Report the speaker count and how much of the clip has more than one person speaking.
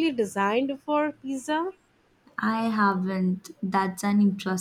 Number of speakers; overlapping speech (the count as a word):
two, no overlap